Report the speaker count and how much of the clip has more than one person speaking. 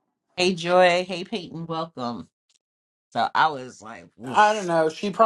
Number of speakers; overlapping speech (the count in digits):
2, about 8%